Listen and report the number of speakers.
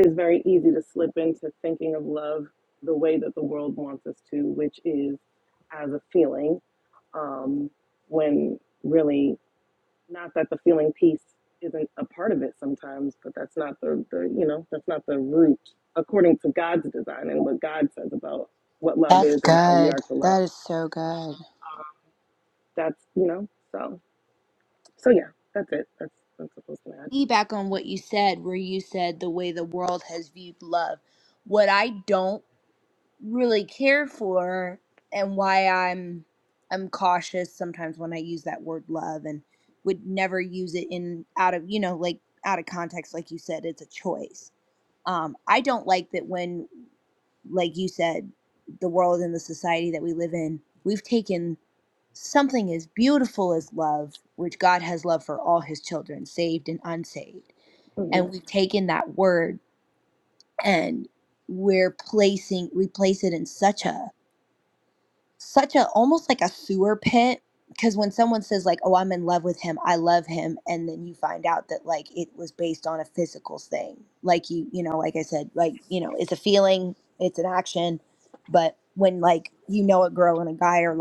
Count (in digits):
2